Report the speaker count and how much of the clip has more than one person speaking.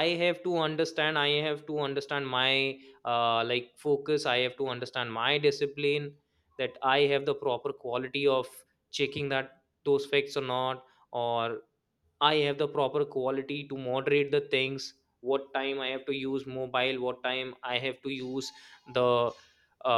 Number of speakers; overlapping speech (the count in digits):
1, no overlap